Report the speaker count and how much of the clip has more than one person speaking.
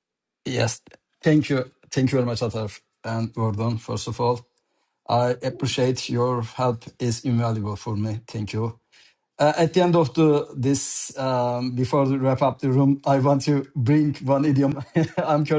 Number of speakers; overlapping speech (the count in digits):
1, no overlap